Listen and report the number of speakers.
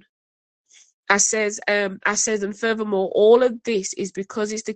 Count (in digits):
1